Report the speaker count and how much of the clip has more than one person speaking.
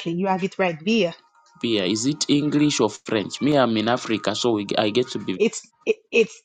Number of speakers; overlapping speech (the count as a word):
two, no overlap